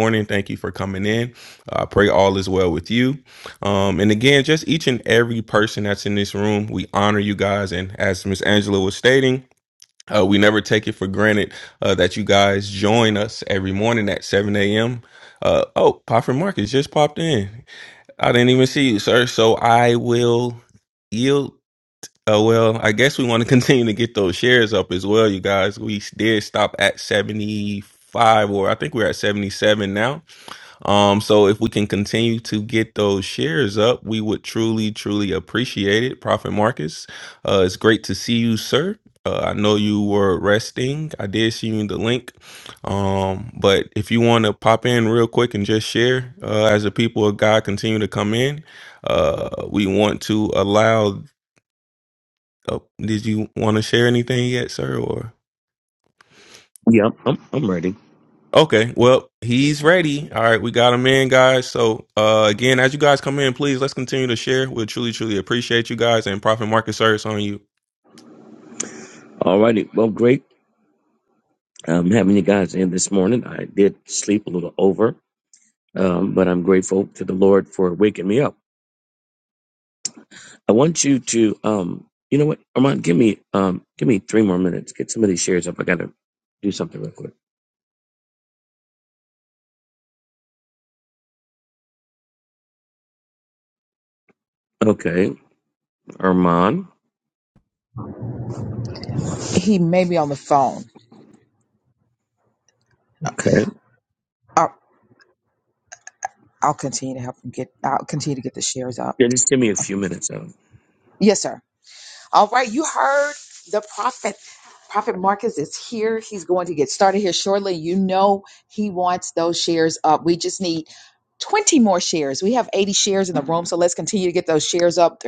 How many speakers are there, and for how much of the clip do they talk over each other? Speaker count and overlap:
3, no overlap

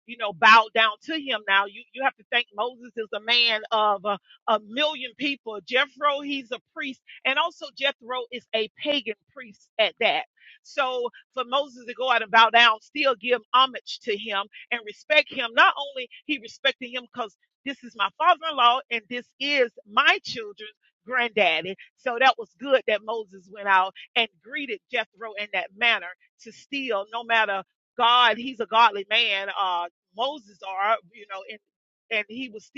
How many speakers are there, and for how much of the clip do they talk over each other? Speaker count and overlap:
1, no overlap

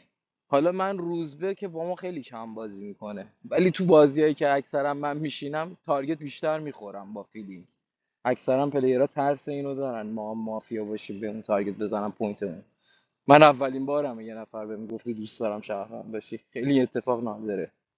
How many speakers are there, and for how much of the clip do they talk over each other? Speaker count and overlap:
1, no overlap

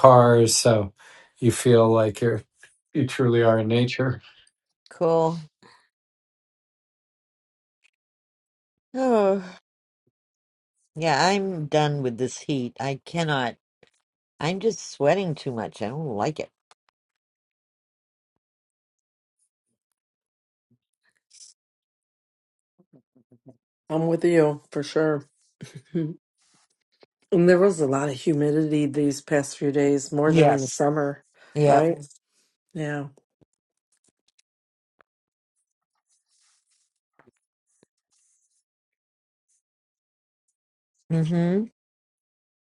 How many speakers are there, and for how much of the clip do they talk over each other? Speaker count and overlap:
3, about 1%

